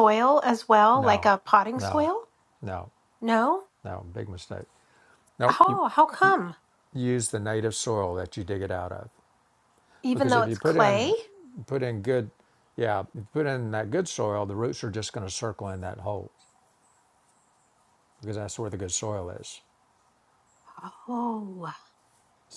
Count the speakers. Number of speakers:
2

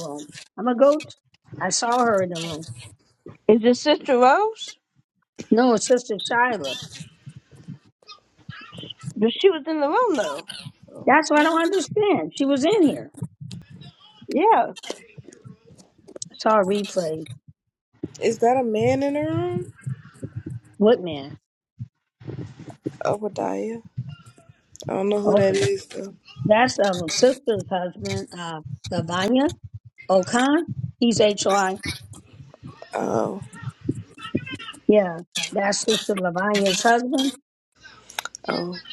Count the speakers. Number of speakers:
3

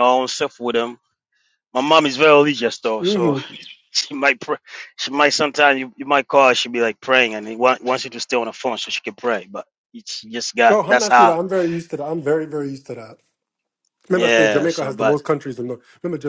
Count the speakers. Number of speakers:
2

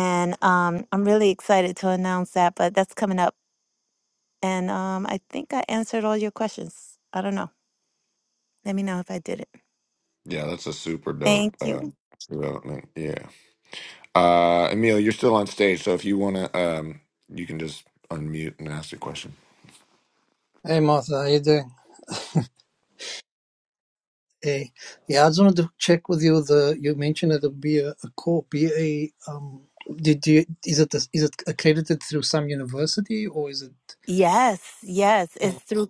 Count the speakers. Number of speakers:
3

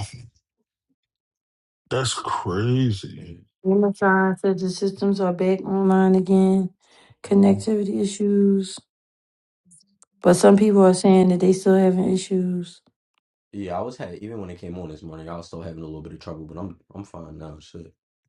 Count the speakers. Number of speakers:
3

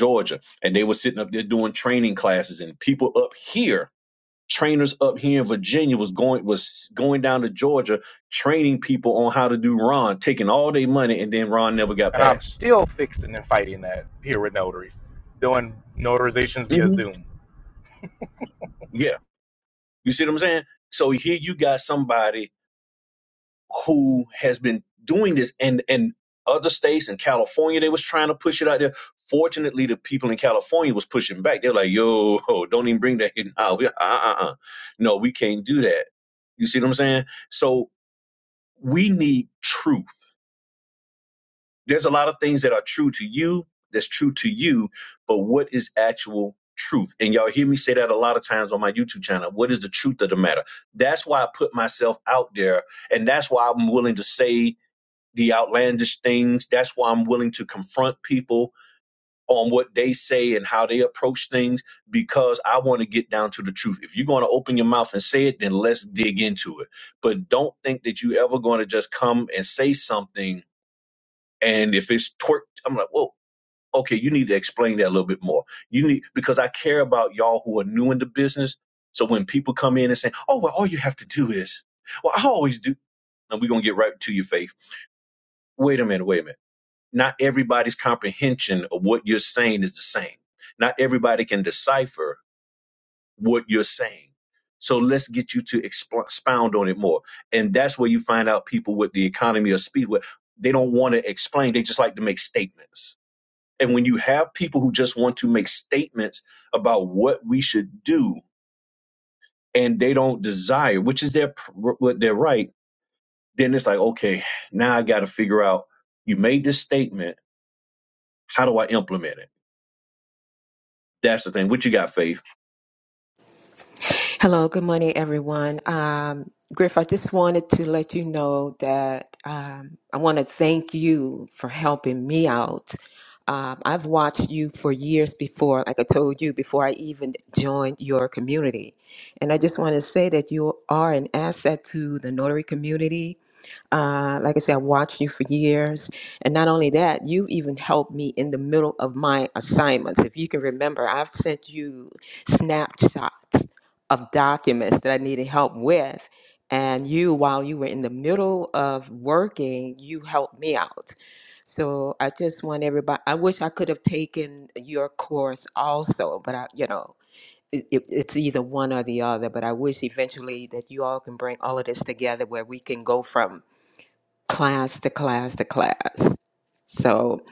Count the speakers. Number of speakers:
3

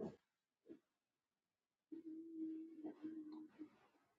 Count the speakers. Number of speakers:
0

